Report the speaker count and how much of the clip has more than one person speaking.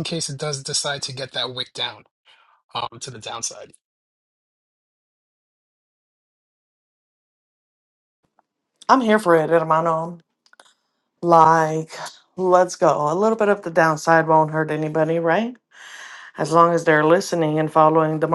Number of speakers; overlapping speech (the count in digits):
2, no overlap